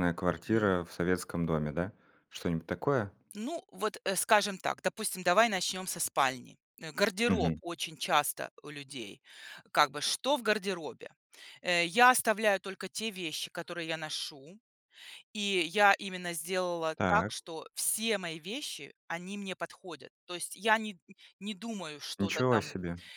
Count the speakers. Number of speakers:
two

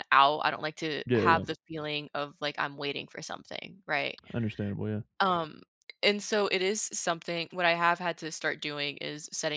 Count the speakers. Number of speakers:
two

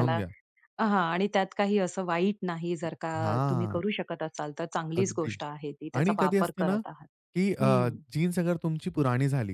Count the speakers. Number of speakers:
two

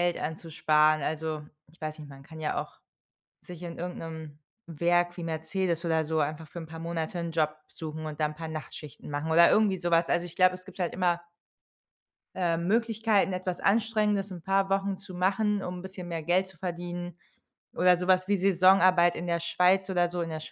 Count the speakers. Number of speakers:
one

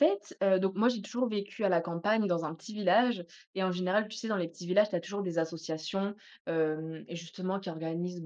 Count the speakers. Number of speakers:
one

